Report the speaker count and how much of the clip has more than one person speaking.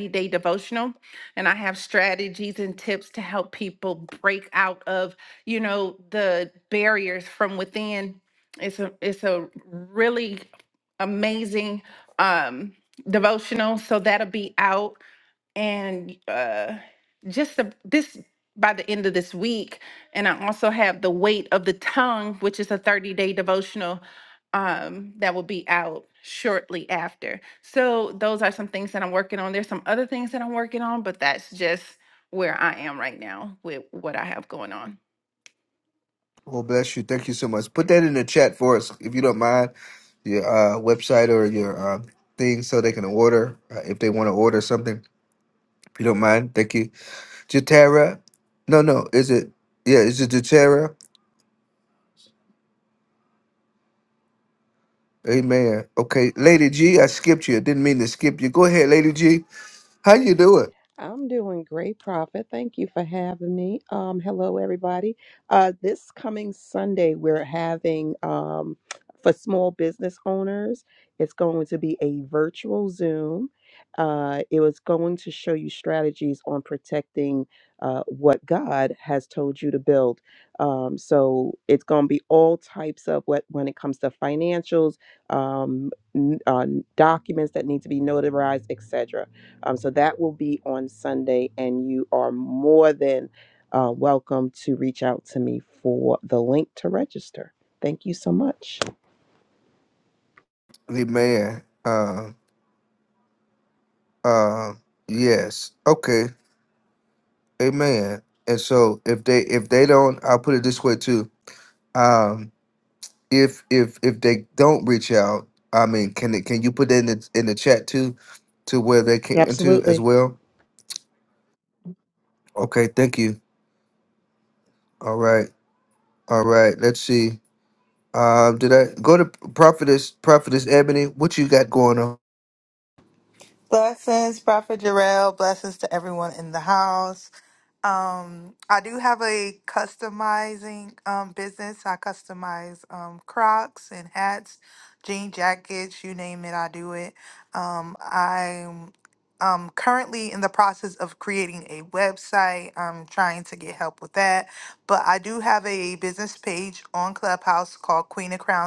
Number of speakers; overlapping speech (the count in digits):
4, under 1%